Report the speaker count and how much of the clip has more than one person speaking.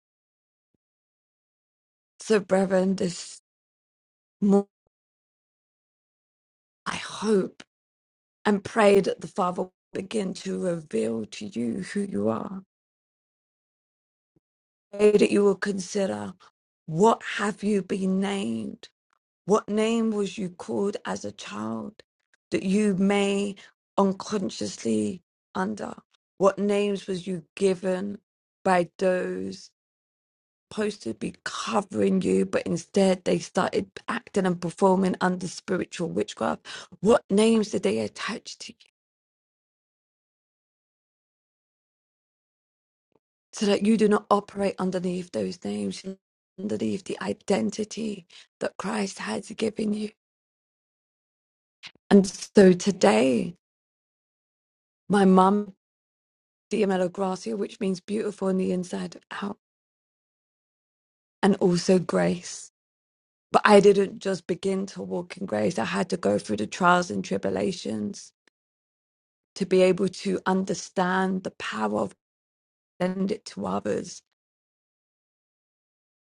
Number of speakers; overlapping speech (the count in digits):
1, no overlap